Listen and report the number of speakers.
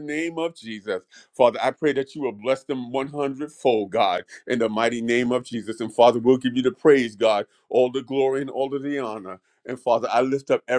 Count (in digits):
1